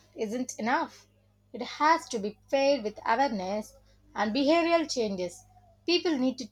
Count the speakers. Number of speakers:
one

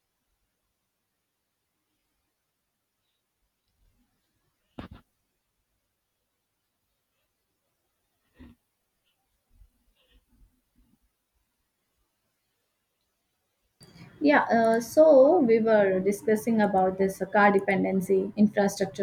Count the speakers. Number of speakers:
one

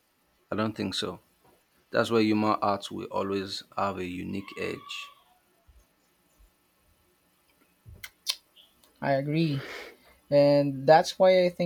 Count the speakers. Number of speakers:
two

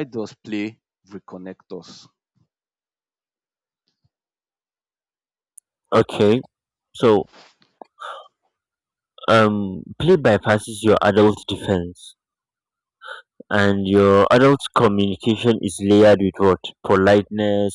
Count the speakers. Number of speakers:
two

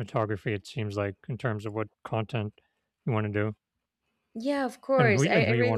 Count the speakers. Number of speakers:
two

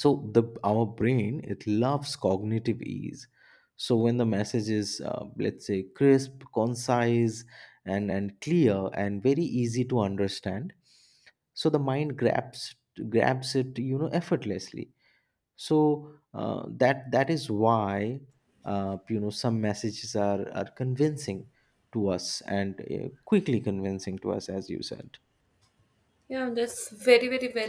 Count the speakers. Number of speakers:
two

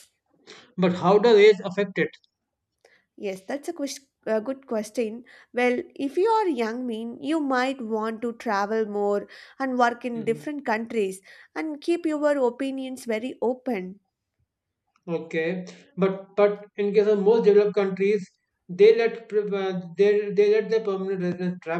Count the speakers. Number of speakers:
two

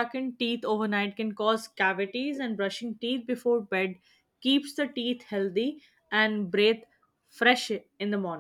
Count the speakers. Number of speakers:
one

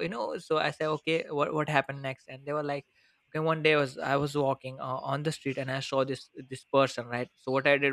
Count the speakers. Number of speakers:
one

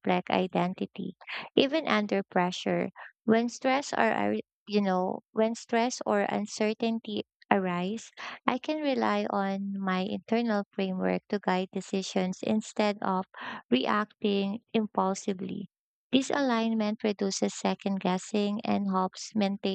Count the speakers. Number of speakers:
one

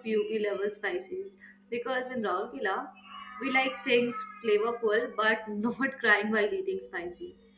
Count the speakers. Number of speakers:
one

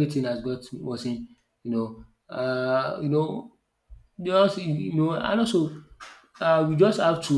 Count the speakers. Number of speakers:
one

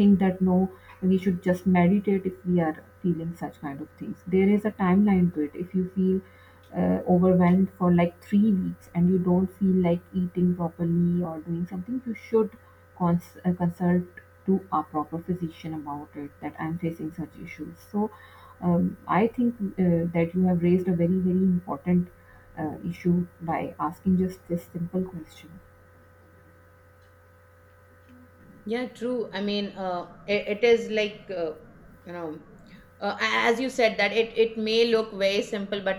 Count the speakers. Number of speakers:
two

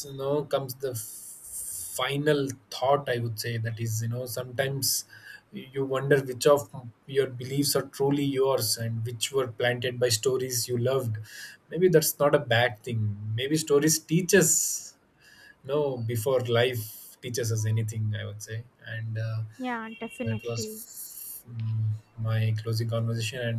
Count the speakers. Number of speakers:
two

